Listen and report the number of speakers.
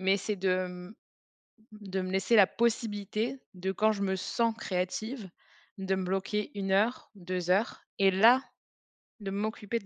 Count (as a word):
one